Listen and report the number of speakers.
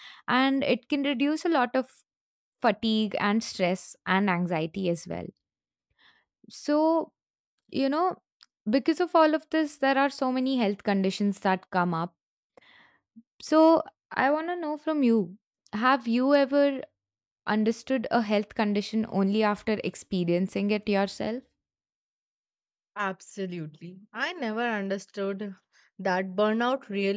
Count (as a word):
two